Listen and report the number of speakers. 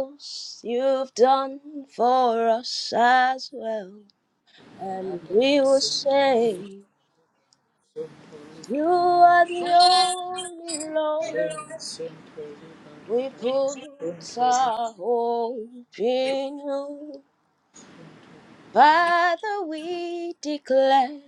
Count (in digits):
2